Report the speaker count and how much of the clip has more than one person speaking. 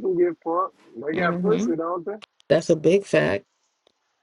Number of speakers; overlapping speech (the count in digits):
2, about 14%